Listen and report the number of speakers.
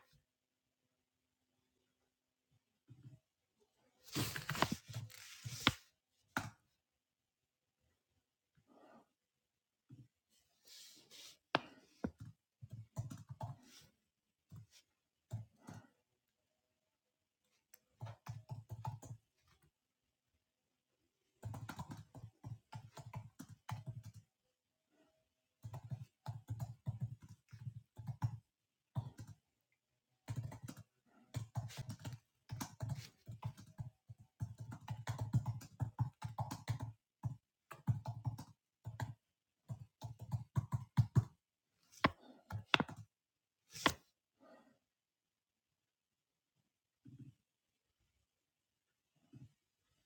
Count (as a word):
zero